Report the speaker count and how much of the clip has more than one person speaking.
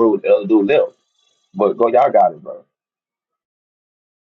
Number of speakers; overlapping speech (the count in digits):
1, no overlap